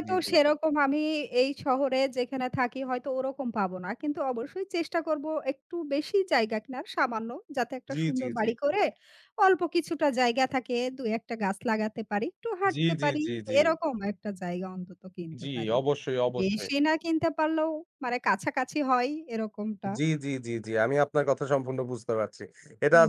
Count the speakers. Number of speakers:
2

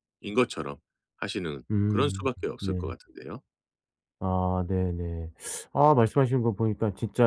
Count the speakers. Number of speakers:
2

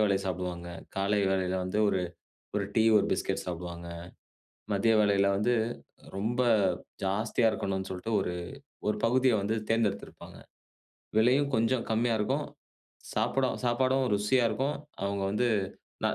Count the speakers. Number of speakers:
1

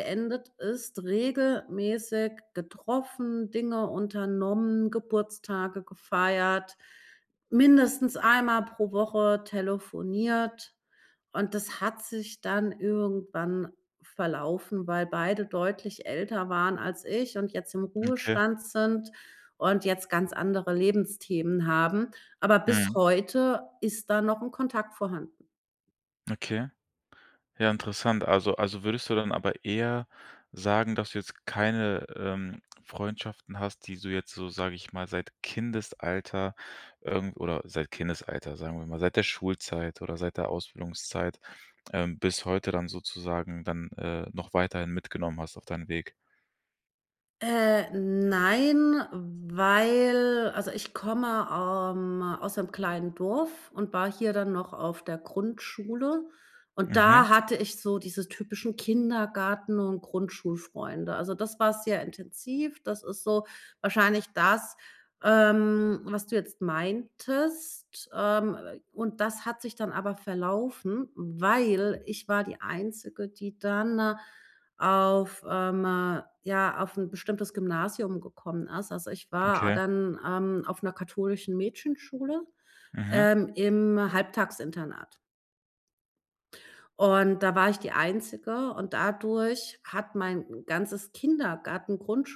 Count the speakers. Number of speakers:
2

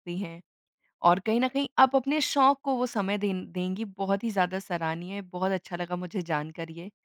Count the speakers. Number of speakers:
1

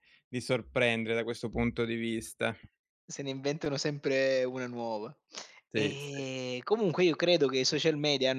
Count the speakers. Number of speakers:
2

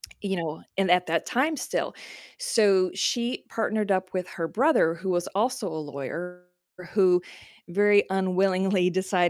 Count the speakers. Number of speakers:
1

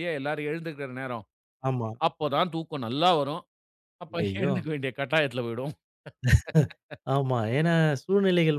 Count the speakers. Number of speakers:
2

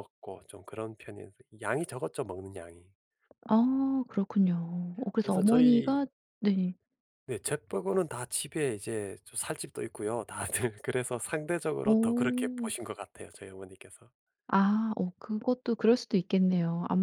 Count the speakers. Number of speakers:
2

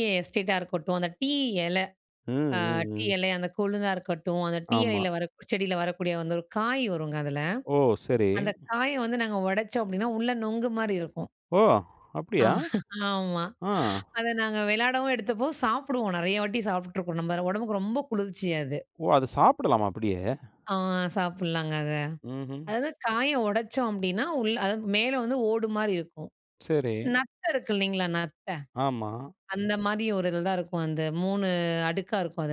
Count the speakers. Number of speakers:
2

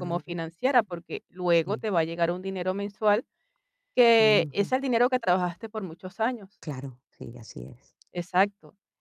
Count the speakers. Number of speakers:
2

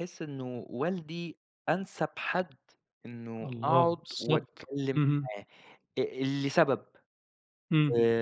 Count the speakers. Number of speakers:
2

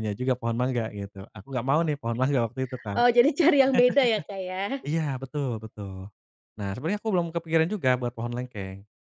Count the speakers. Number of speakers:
2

